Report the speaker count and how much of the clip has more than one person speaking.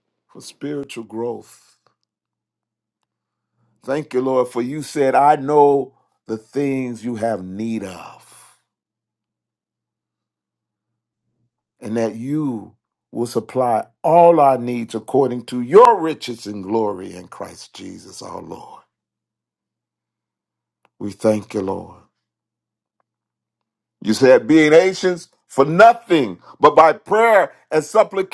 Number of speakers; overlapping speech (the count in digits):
1, no overlap